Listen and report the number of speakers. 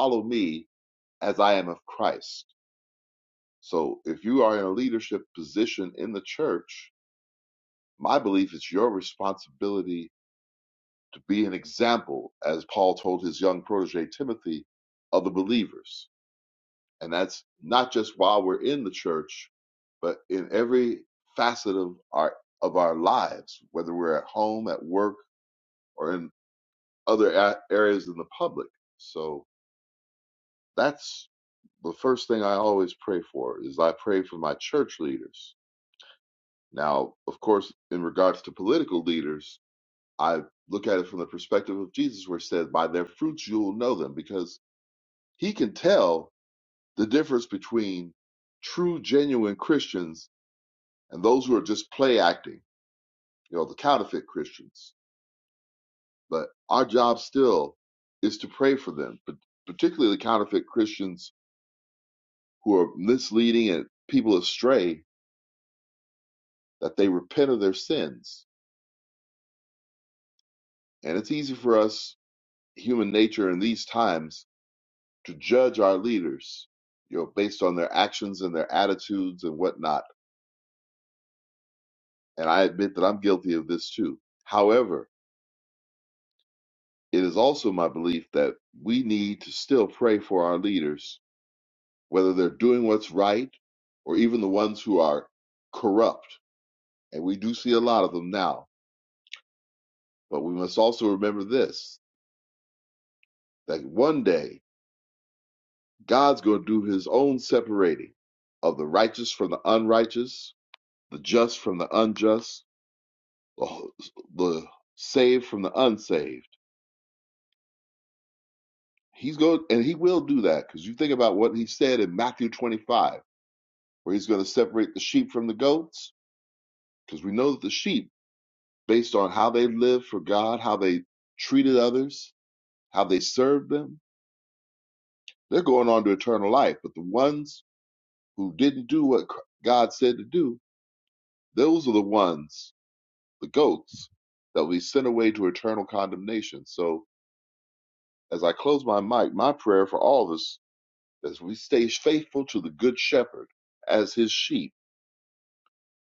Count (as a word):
one